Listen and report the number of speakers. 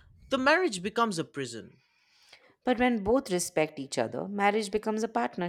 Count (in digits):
2